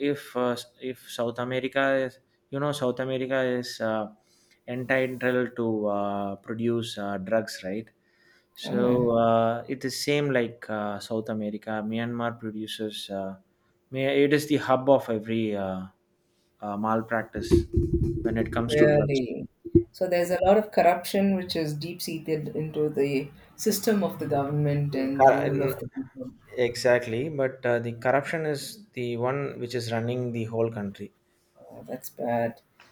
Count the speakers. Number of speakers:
two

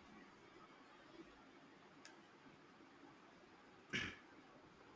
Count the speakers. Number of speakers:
zero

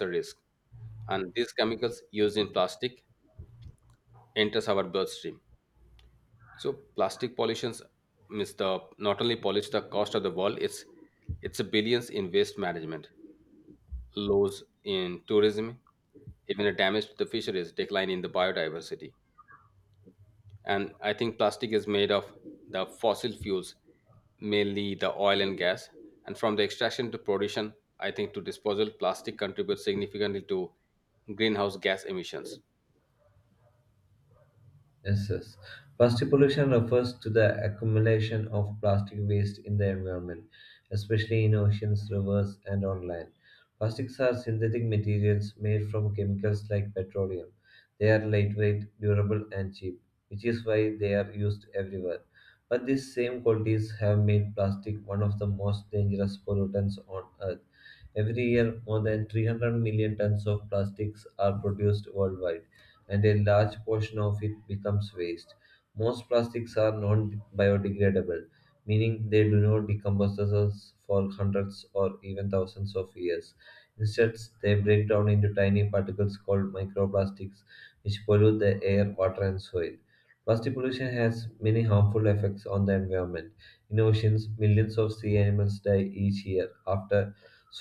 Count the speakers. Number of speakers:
two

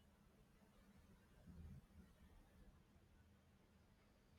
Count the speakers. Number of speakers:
zero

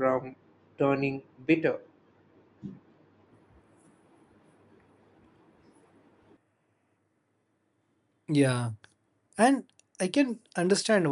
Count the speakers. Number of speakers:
two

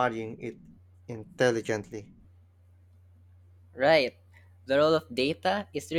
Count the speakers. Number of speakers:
two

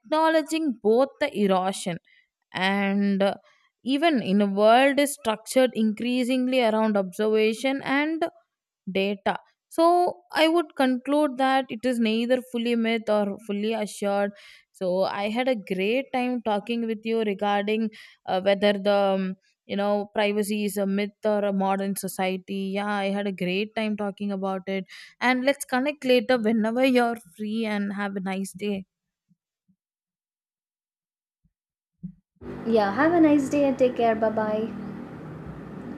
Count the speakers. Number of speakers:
two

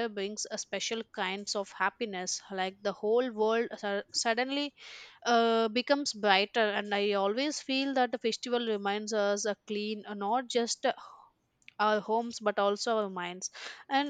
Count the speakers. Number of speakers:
one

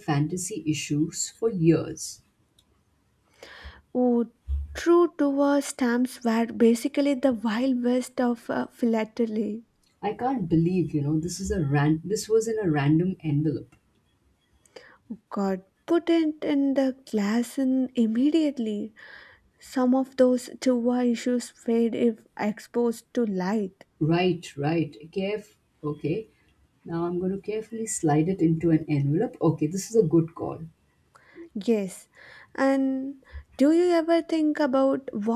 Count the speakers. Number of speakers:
two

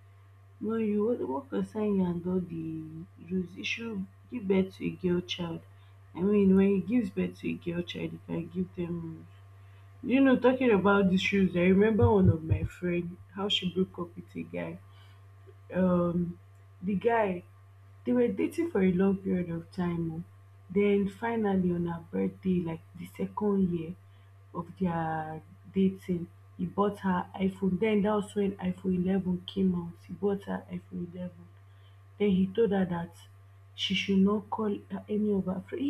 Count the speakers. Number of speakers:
one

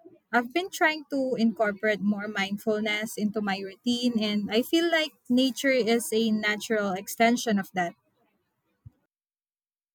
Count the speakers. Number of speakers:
one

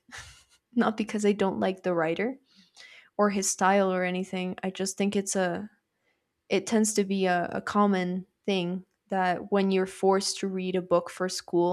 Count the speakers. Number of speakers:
one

